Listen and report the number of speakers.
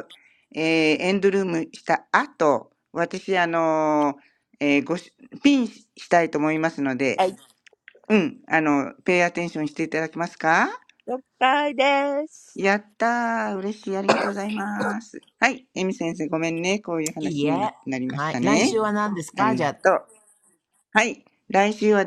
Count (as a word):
three